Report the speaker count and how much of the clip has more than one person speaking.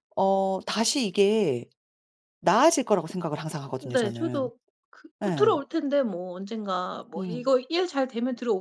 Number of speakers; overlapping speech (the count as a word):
two, about 14%